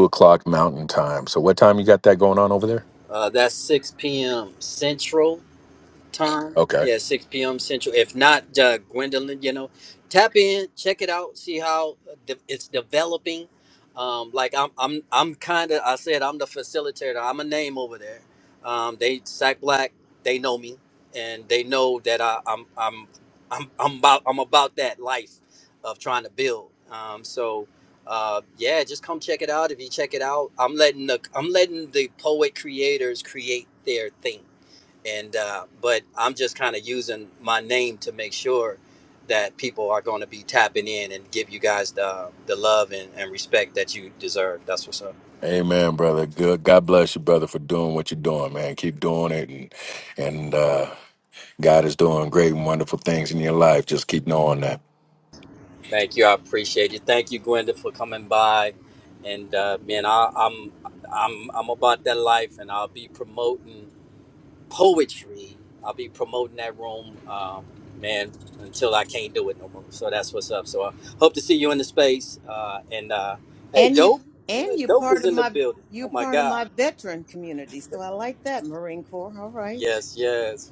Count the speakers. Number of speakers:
3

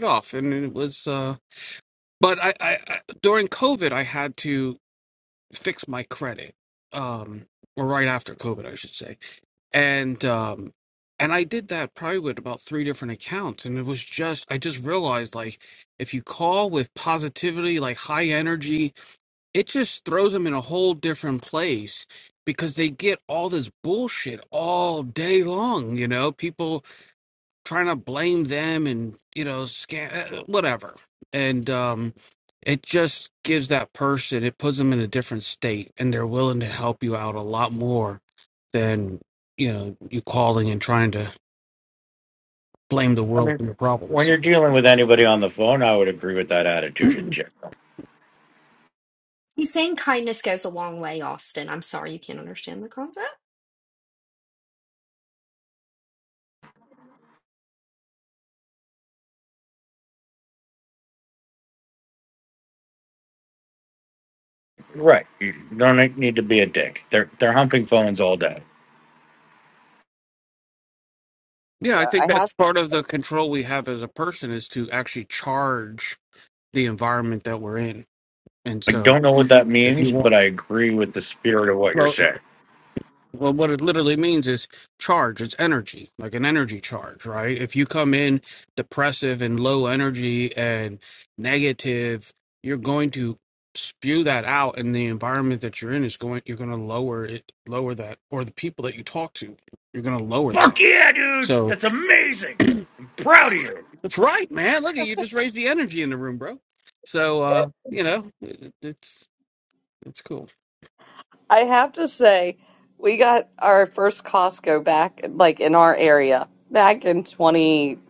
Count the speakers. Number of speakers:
4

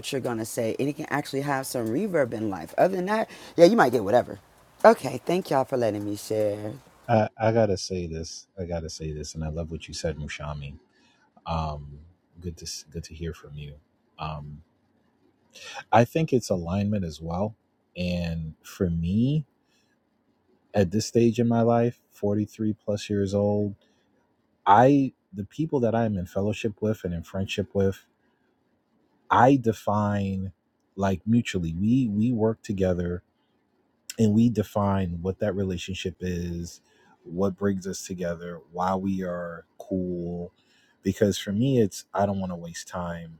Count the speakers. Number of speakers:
2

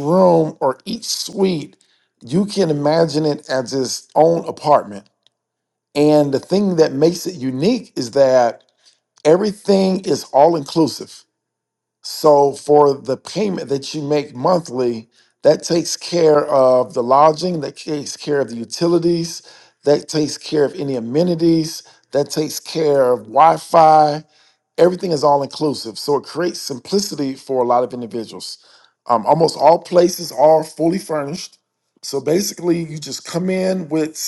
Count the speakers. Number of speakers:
1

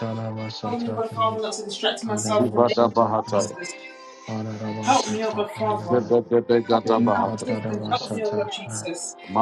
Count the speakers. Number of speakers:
3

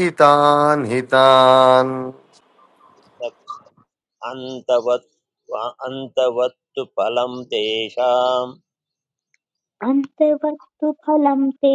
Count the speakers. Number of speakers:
3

